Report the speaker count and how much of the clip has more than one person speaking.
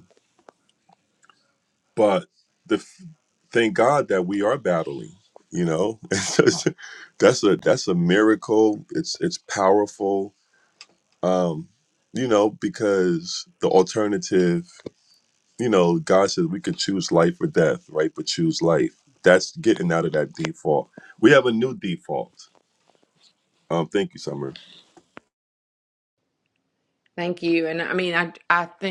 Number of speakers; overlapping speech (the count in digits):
2, no overlap